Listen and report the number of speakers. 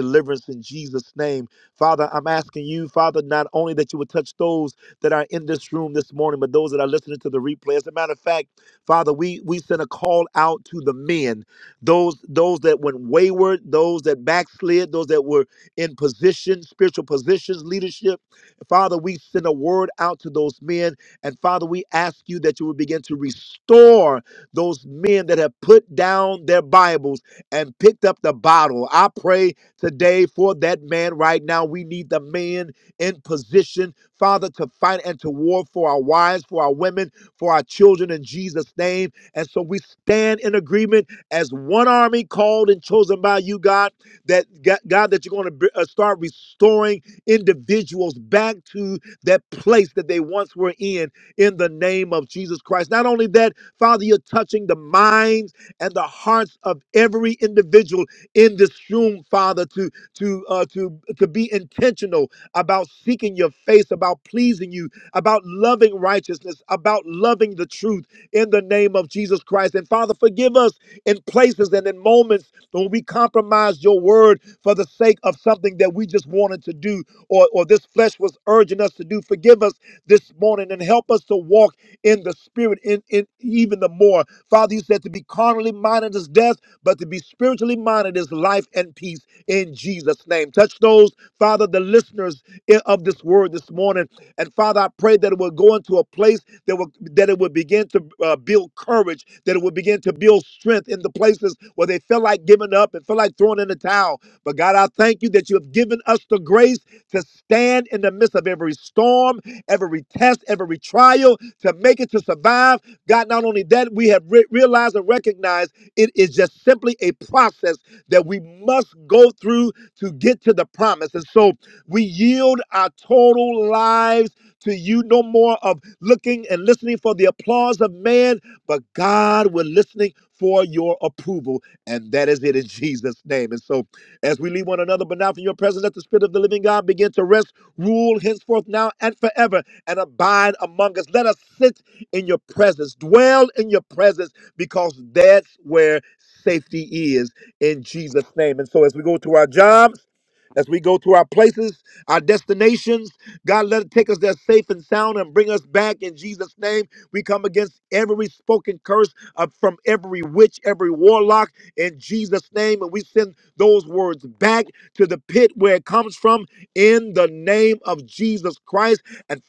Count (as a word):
one